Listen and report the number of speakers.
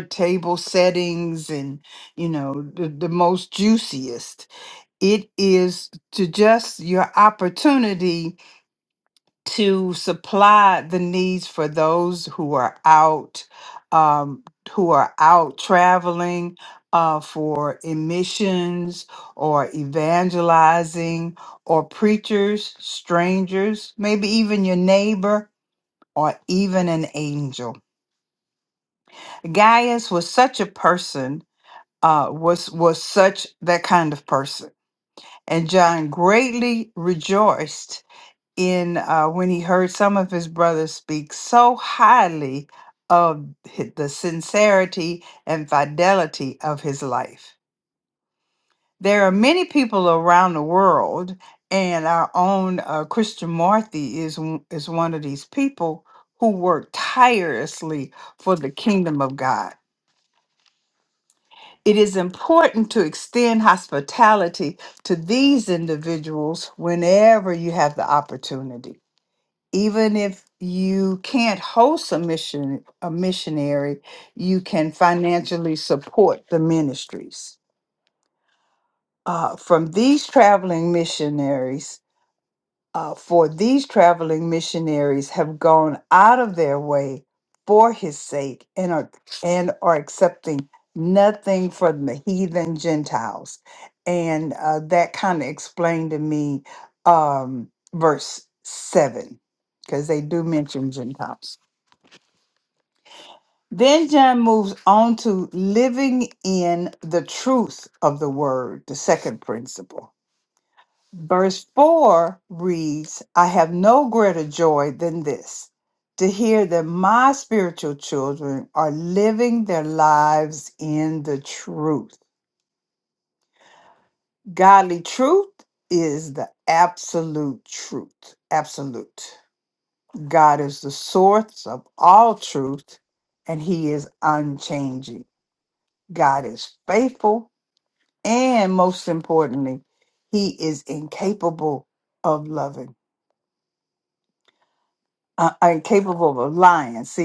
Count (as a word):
one